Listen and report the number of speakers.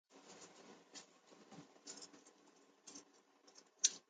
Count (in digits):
0